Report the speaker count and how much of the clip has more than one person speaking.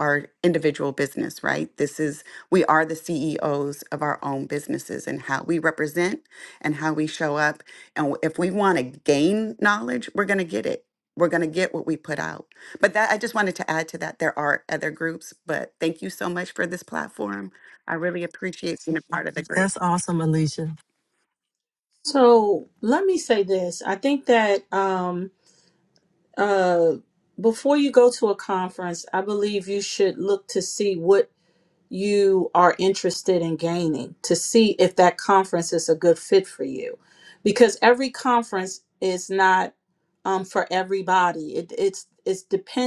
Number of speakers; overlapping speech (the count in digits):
3, under 1%